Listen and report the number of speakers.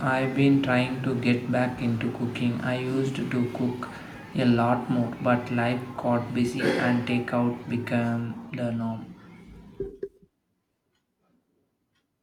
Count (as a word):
one